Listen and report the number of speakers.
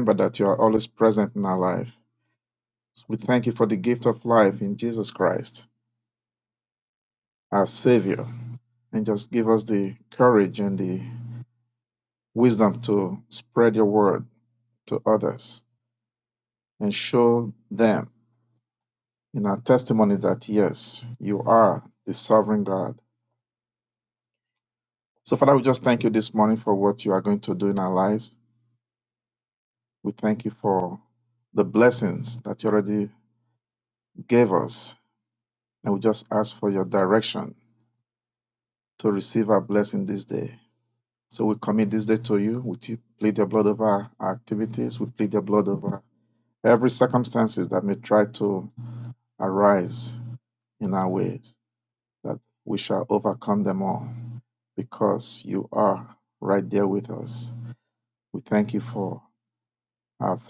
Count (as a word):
one